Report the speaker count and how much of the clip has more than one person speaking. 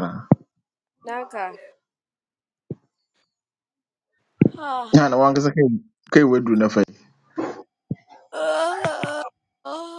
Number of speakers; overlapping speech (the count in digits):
2, under 1%